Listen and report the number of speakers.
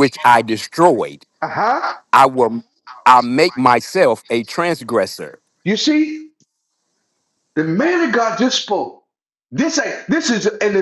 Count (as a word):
two